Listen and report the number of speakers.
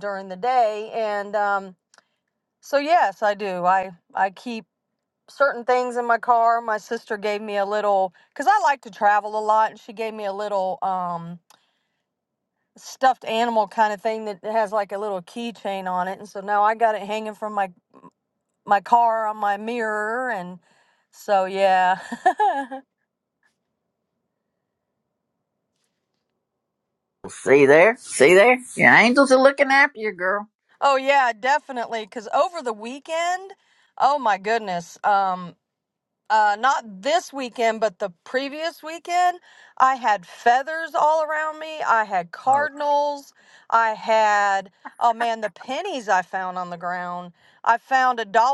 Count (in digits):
2